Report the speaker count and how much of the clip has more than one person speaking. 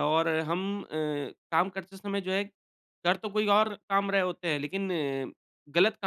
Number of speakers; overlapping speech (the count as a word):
one, no overlap